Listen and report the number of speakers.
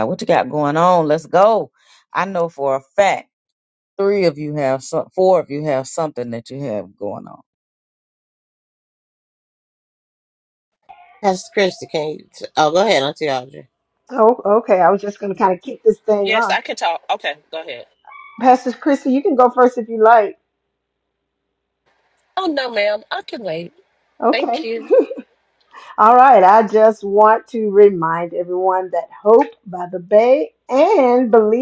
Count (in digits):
4